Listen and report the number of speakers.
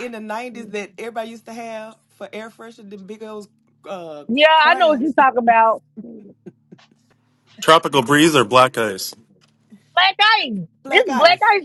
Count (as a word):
three